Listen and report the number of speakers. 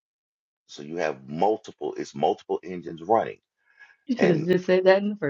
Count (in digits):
2